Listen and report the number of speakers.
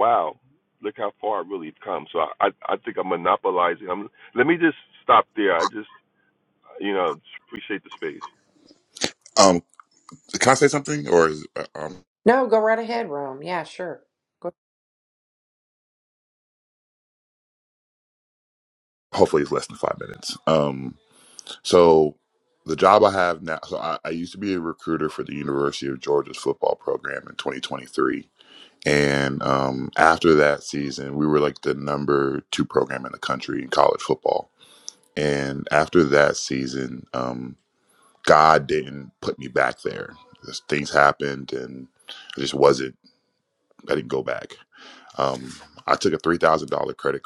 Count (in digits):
3